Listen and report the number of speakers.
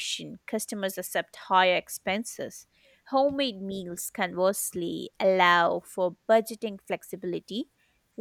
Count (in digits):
1